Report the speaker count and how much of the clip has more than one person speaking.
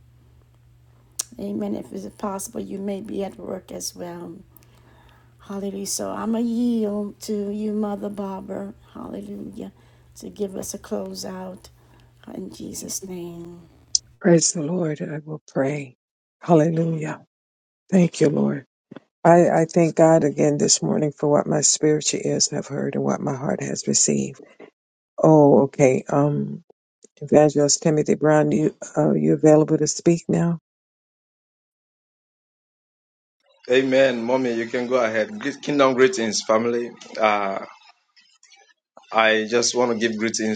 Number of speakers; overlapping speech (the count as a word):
three, no overlap